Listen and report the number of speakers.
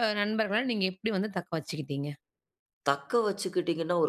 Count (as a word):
two